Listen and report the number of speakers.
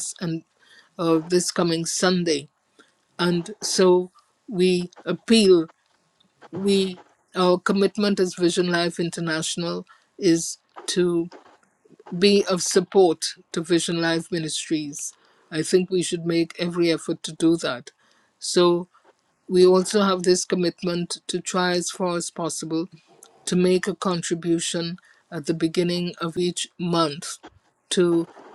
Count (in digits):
1